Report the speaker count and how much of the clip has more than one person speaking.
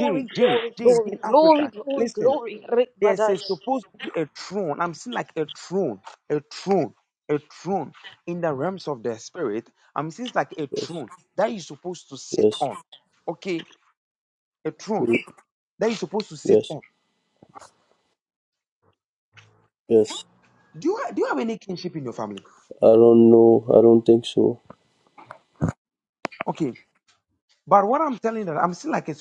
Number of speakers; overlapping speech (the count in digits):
3, about 11%